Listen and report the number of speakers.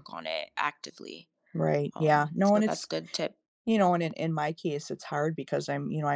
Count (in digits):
2